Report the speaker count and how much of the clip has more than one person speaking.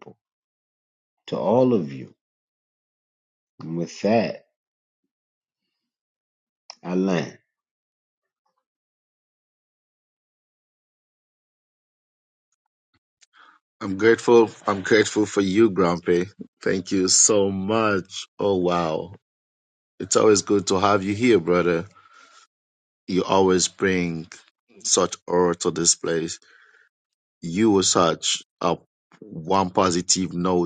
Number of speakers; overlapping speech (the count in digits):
2, no overlap